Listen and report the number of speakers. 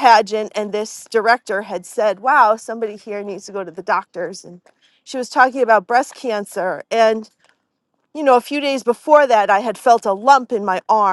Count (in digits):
1